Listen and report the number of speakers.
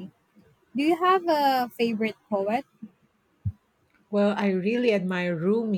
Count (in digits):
2